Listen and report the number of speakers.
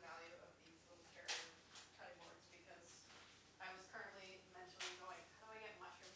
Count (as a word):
one